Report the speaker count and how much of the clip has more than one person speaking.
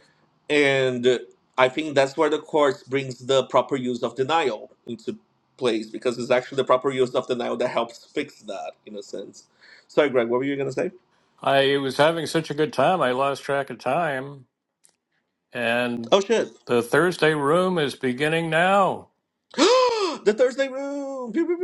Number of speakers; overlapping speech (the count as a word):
two, under 1%